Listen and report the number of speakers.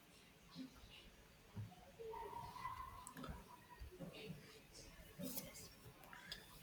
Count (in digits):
0